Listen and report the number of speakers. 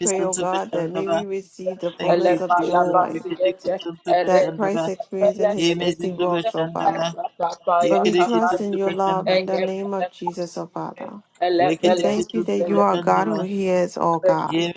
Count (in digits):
3